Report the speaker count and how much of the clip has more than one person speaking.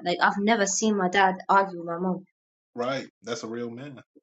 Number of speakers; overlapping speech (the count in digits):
2, no overlap